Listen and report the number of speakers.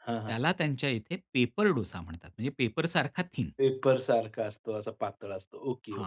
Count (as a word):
two